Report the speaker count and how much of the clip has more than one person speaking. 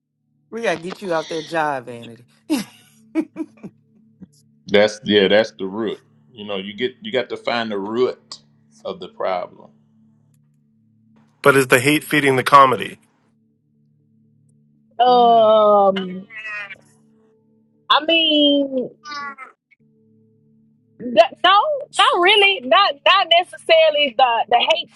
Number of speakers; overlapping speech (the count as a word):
four, about 1%